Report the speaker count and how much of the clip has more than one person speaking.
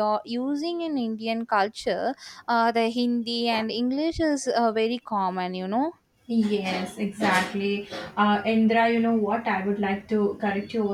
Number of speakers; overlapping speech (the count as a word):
two, no overlap